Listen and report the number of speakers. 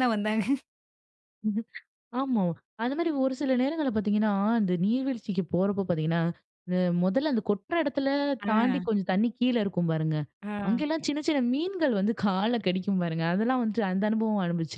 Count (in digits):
2